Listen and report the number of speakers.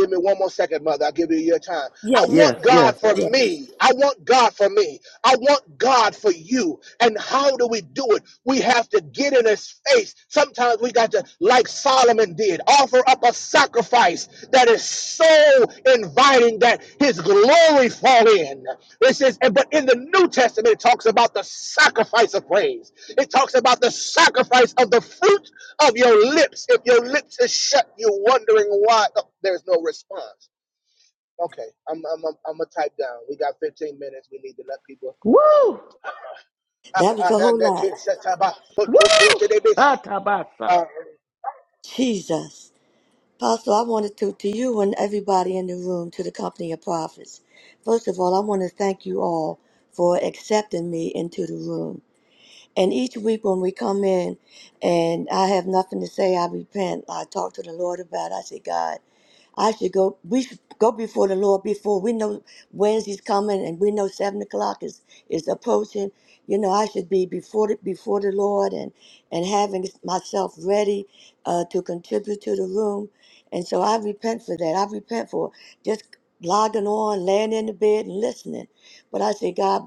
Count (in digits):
3